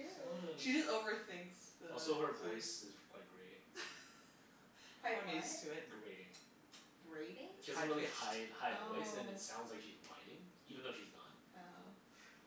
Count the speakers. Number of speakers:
four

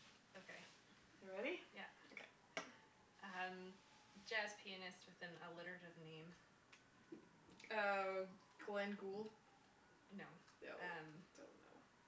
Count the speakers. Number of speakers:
two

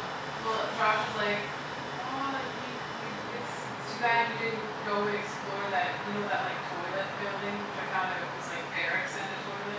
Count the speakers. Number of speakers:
one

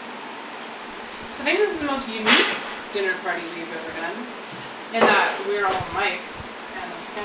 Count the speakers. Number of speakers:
one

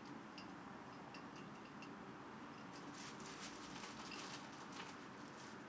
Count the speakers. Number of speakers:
zero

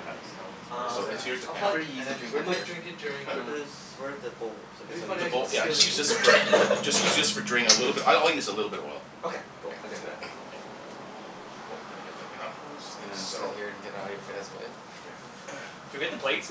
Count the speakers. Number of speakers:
four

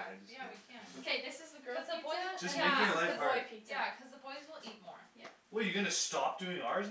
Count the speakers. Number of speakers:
three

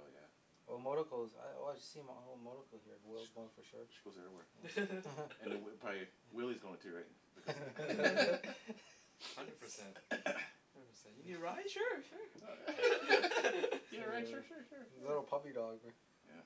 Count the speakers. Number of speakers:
three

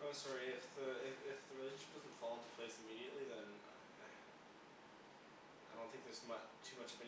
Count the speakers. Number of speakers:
one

